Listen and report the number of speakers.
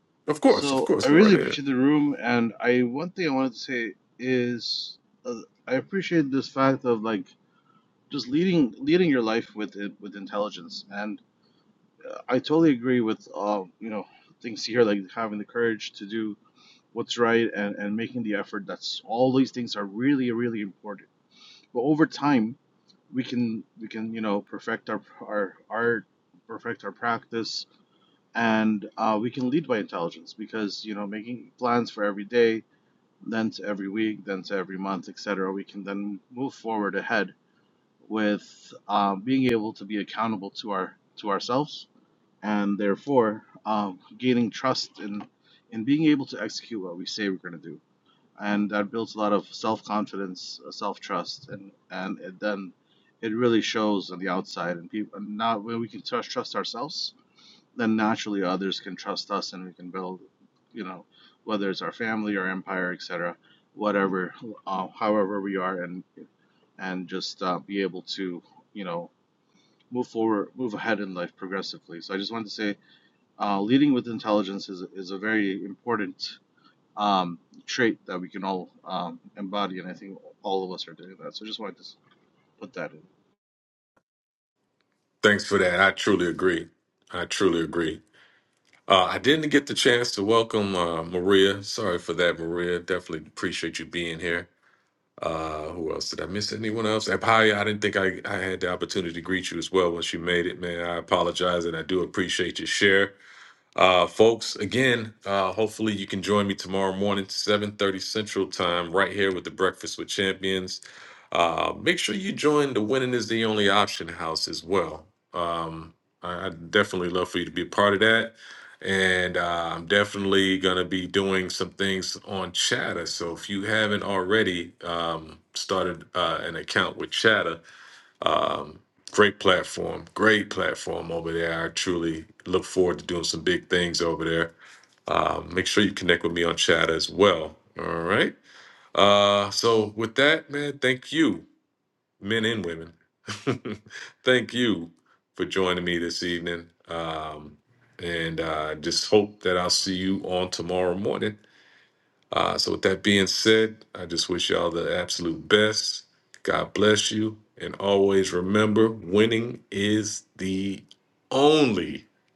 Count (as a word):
two